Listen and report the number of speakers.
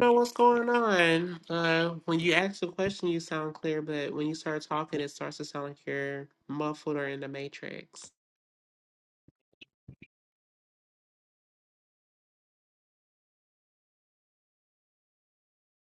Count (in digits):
1